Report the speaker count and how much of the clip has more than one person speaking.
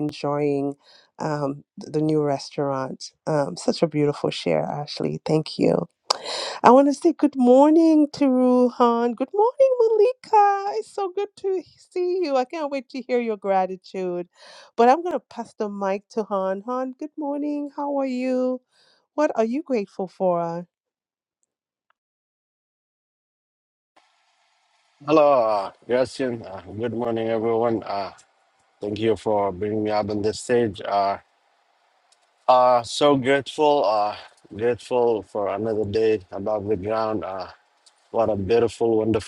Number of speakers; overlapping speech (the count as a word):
two, no overlap